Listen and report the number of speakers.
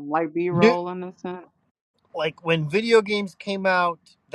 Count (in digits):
2